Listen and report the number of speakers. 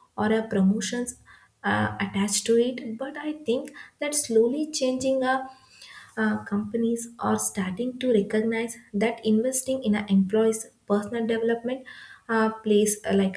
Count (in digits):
1